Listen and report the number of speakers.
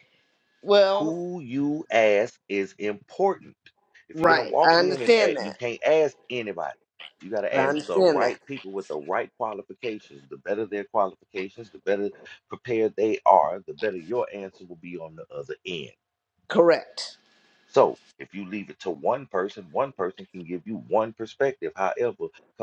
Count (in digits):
2